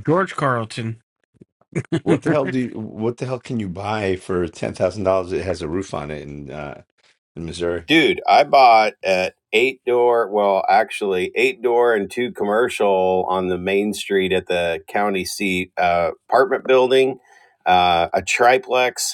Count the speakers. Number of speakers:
3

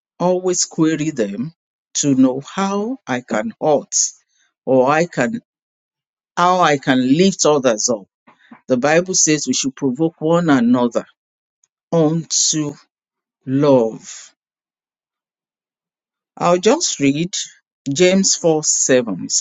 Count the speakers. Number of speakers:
1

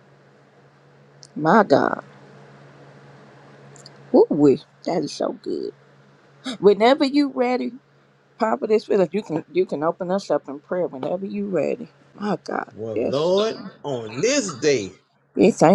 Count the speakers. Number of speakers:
2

